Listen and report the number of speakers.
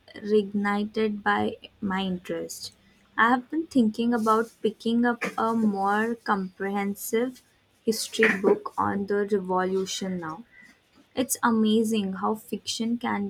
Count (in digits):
1